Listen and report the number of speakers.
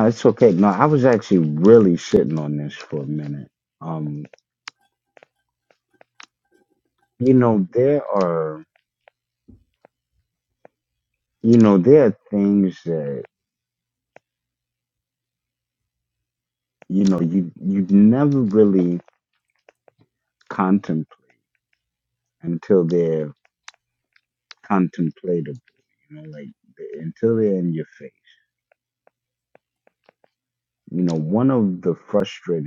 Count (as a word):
one